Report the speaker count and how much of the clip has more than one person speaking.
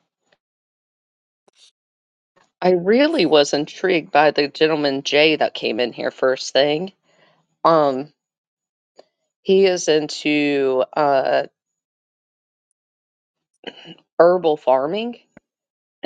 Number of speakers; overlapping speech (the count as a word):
one, no overlap